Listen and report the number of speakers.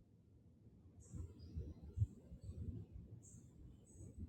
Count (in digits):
0